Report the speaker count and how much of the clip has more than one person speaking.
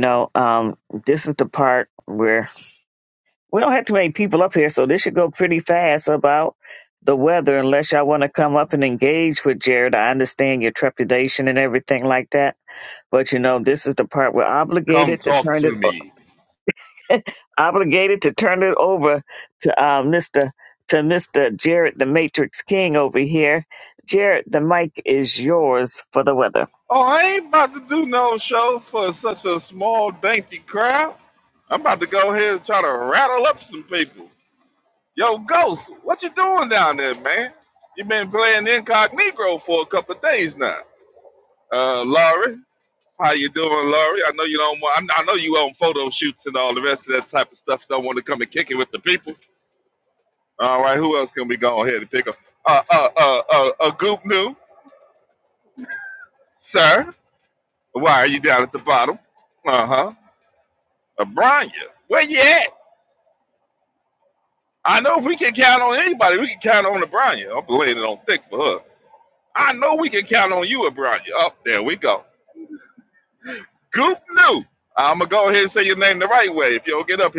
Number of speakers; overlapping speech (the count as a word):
two, about 1%